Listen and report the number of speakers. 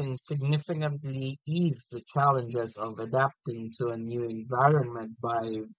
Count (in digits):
1